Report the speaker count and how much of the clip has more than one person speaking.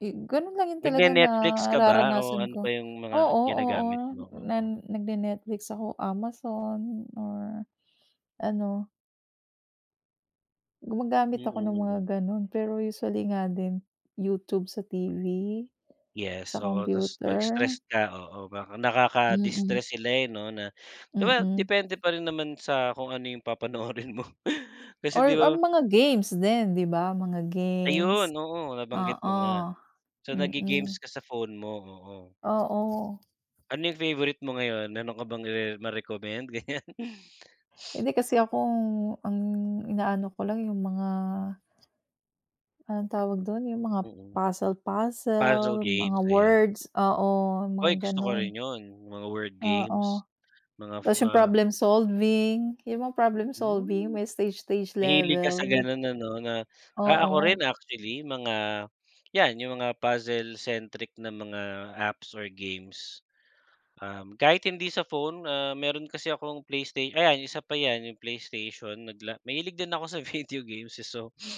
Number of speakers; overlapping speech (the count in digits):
2, about 16%